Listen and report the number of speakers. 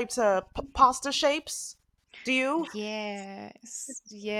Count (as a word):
two